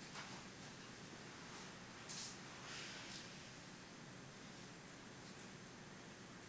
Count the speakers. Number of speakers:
zero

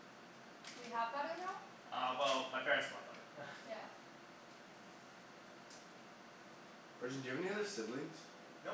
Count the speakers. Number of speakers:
three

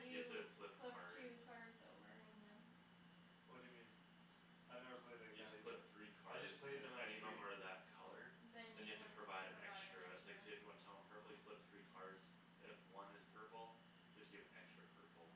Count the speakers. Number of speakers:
three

